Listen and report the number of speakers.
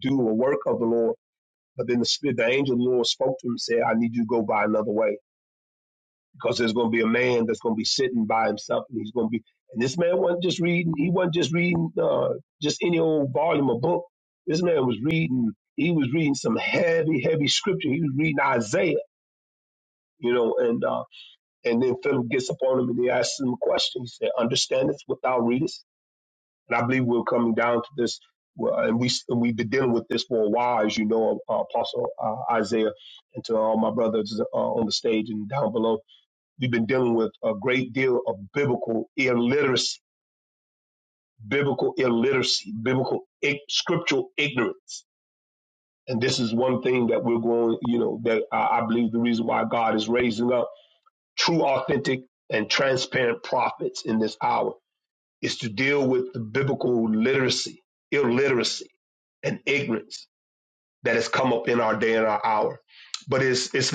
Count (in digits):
1